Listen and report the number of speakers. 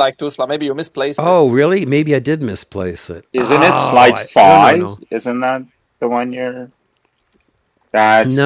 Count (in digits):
3